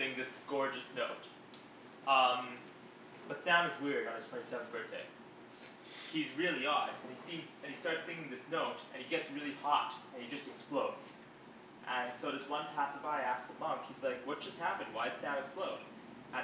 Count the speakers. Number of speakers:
1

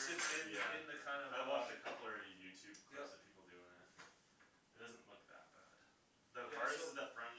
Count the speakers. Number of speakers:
2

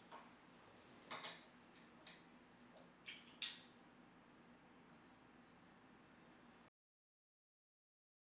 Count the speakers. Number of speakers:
0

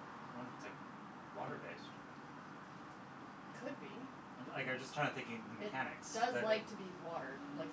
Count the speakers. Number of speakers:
2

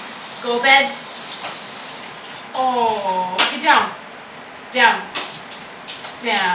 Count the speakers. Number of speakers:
1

